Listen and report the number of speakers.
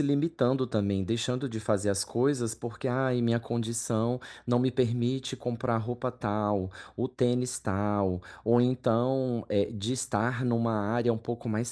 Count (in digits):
1